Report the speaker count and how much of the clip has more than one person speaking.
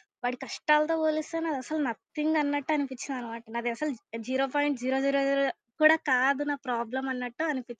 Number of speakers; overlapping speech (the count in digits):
1, no overlap